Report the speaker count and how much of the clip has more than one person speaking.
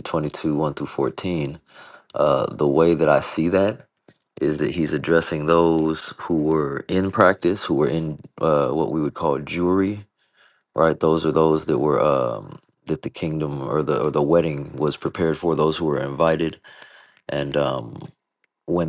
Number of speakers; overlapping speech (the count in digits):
1, no overlap